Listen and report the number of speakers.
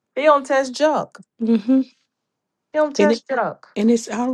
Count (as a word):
two